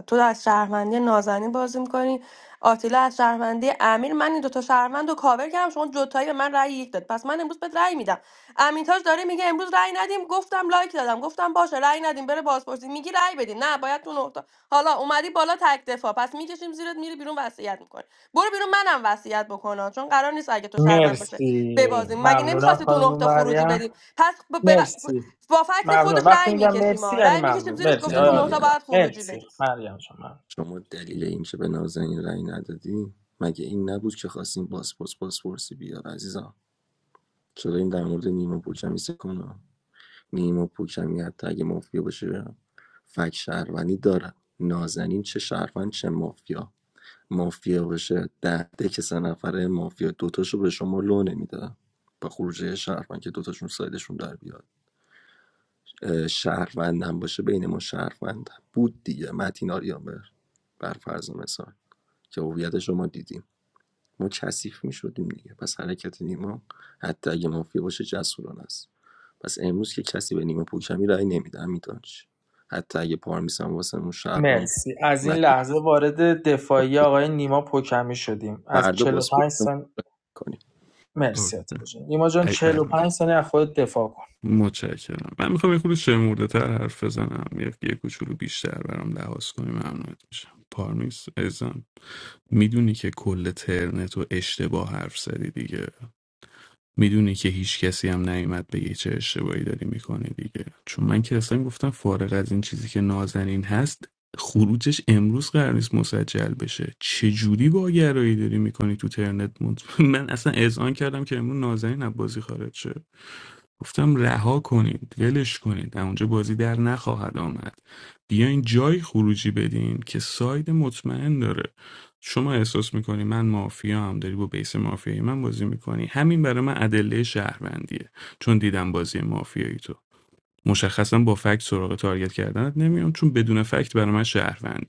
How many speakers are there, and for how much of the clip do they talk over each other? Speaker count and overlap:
four, about 6%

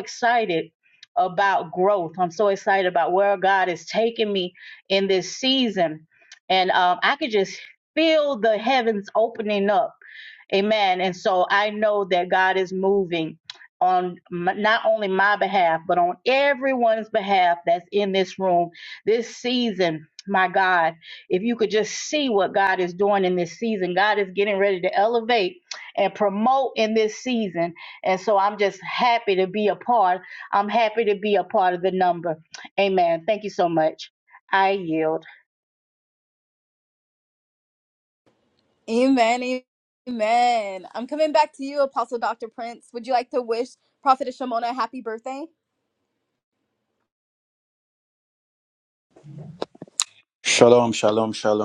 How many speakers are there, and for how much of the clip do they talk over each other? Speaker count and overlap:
three, no overlap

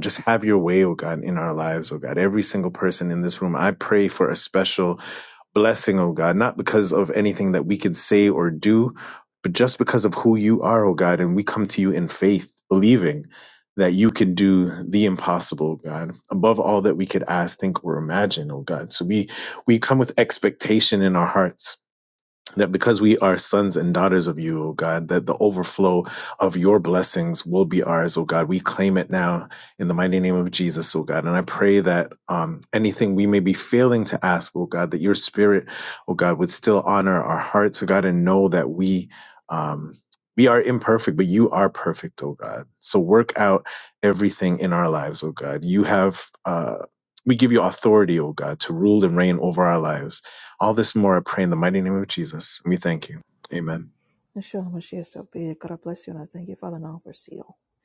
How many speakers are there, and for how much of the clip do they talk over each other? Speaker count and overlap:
two, no overlap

